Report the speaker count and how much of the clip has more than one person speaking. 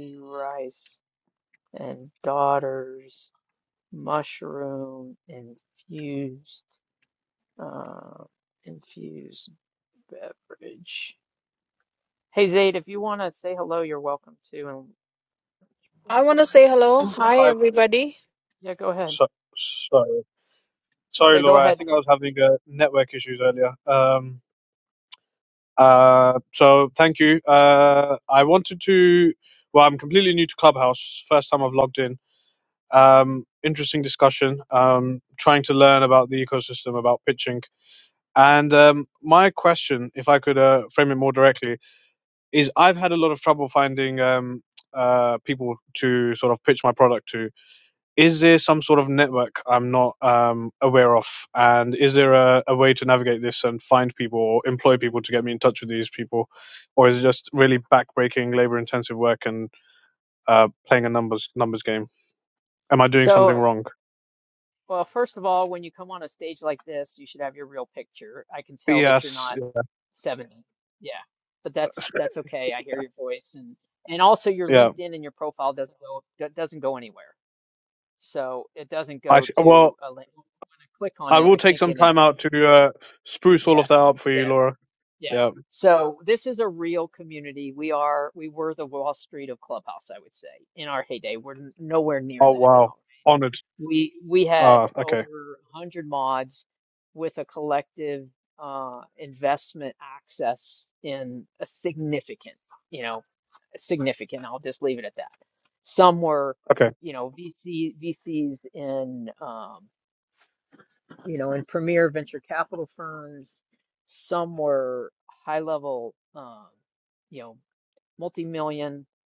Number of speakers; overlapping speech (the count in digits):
3, about 5%